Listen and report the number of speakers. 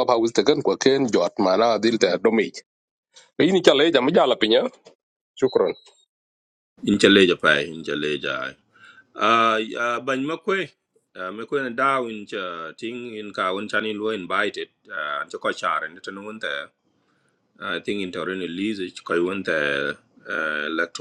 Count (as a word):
two